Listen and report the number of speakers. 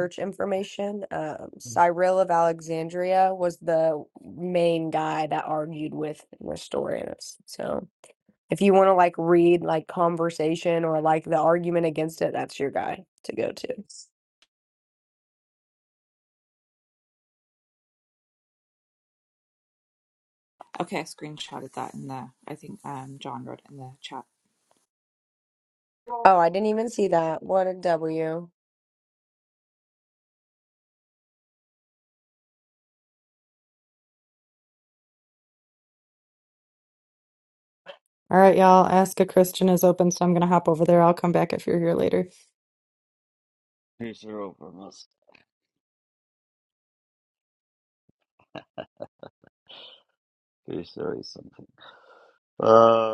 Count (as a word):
four